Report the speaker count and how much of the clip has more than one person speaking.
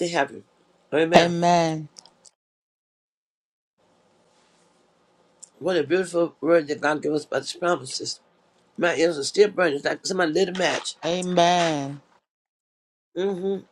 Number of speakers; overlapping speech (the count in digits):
2, about 1%